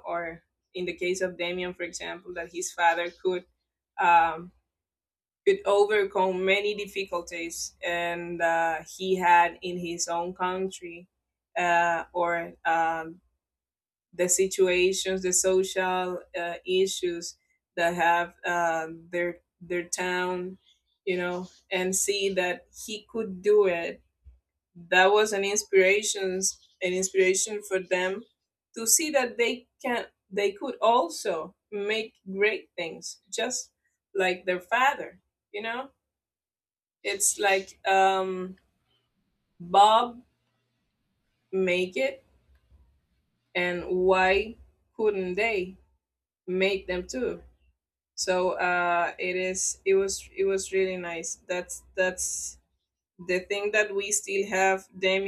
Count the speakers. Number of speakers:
1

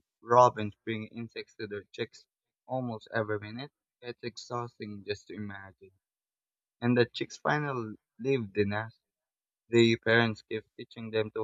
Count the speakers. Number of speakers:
1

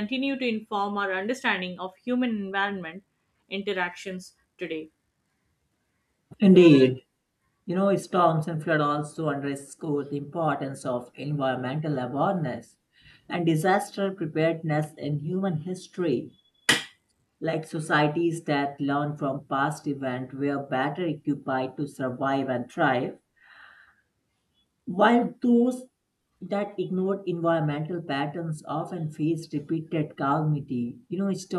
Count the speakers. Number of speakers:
2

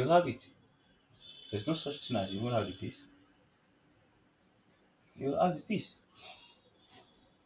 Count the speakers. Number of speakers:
1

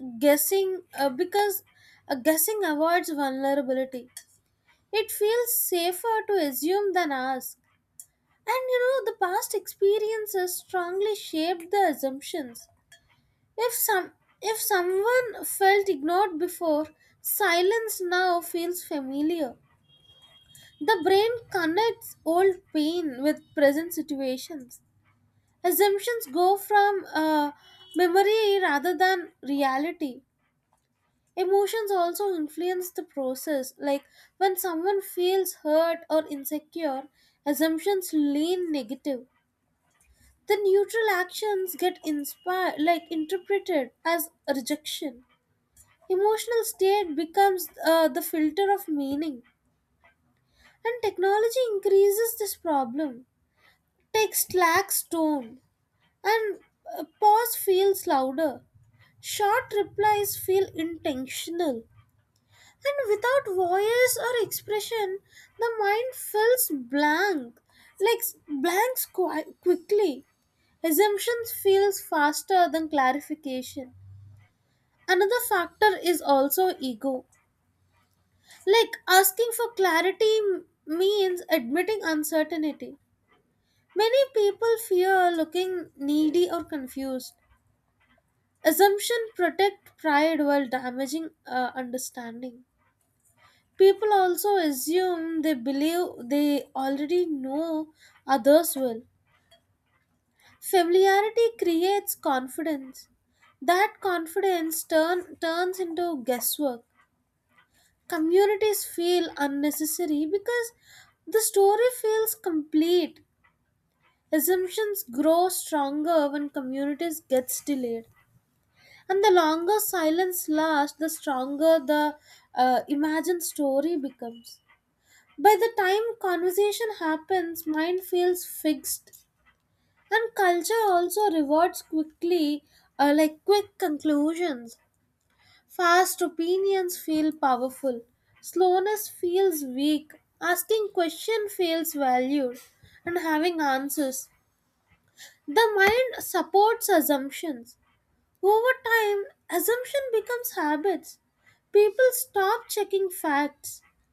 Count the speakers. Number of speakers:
1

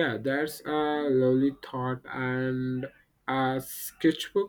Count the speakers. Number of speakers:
1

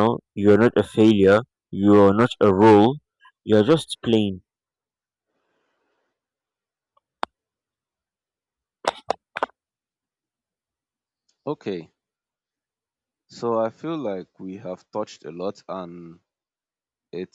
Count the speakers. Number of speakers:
2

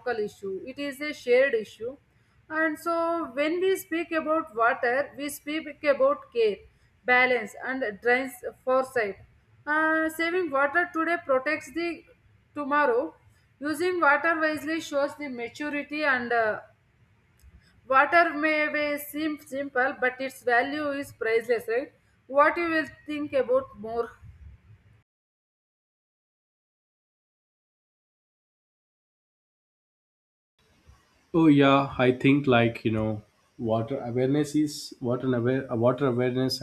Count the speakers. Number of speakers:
2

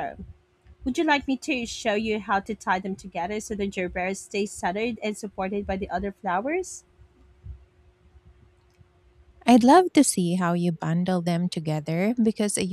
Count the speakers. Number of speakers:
2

